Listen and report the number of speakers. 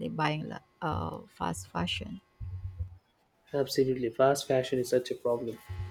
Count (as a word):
two